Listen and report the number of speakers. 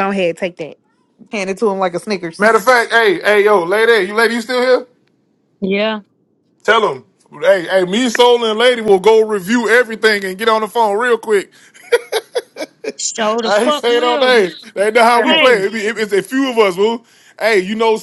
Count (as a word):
three